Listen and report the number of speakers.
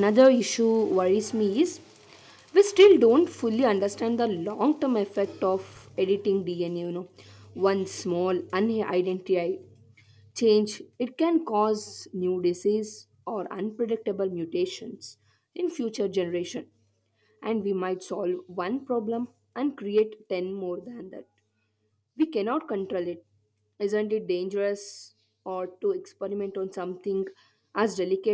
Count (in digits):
1